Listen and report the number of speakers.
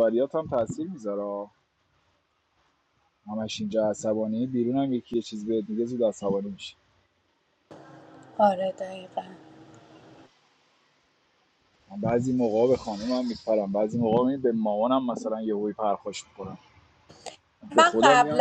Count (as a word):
two